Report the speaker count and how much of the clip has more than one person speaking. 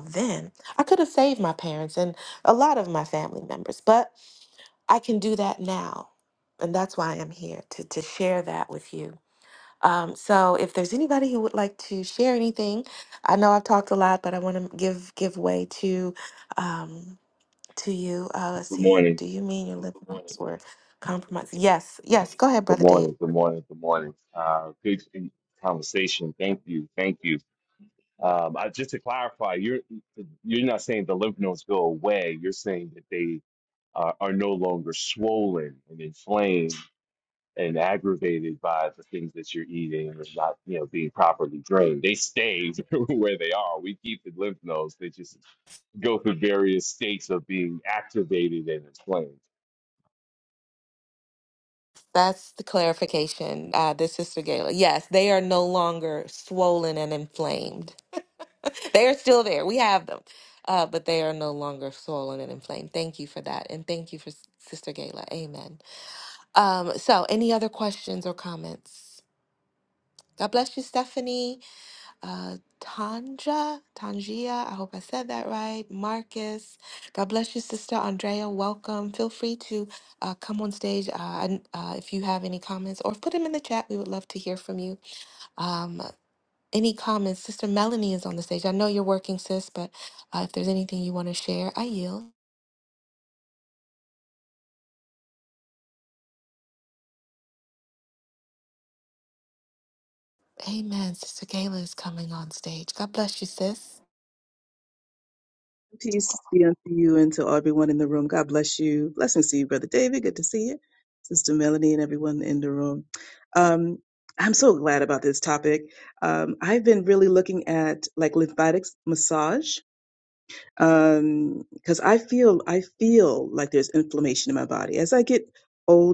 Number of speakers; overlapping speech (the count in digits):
3, about 1%